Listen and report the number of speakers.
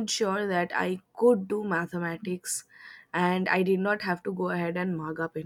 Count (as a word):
one